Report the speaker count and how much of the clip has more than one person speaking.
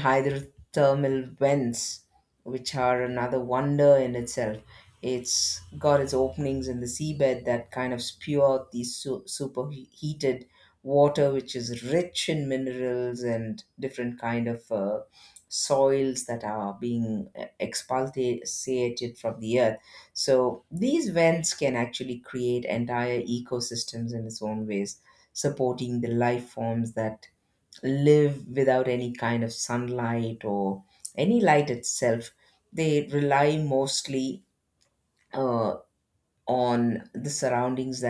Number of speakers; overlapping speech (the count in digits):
1, no overlap